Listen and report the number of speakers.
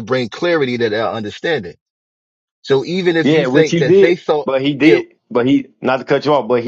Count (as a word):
two